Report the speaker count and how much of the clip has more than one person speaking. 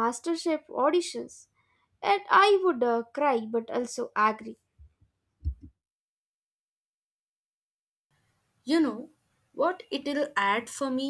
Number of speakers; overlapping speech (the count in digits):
2, no overlap